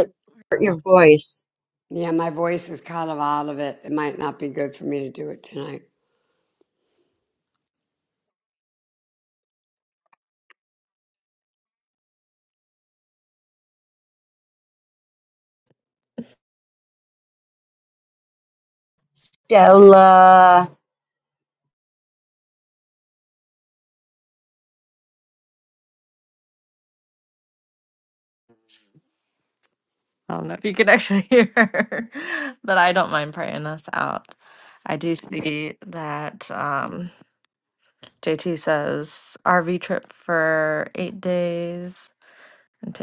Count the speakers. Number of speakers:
3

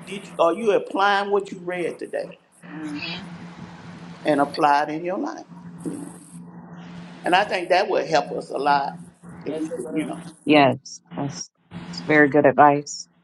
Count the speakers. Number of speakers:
3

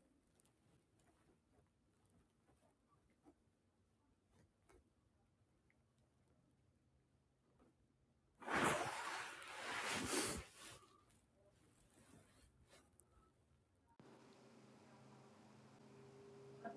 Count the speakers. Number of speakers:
0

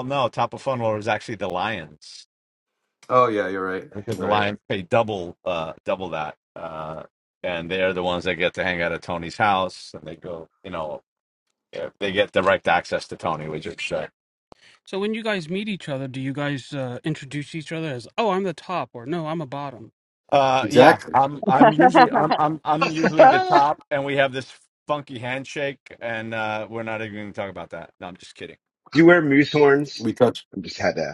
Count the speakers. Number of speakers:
4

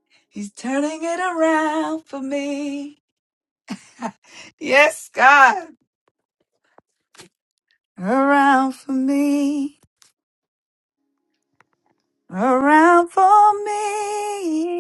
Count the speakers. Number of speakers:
1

